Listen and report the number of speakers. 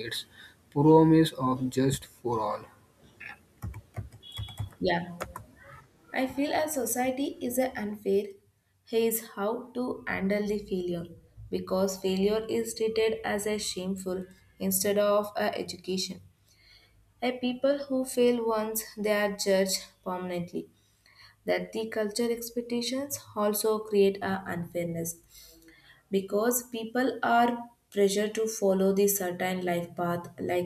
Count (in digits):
2